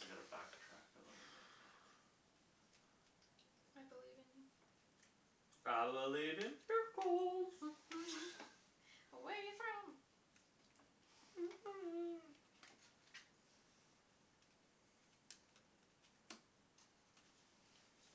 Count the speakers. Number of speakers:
3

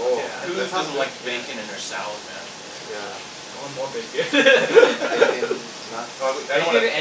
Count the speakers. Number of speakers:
3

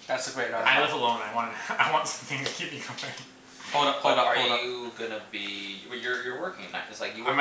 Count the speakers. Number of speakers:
3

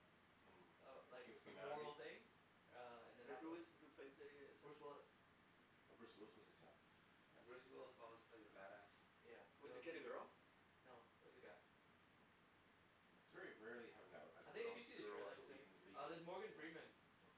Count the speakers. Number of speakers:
4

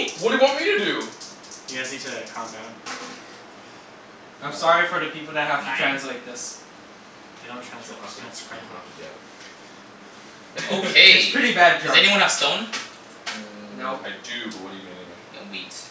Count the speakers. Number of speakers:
4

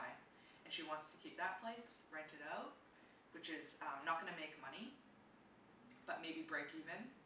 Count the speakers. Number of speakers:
1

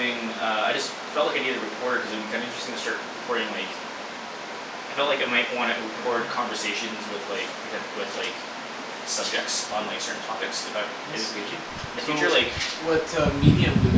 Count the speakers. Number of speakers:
2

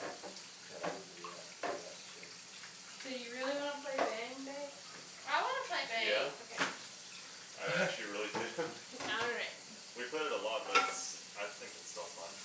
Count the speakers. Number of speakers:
4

